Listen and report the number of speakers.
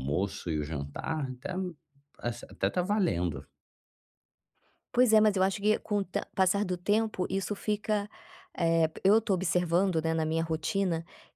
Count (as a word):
two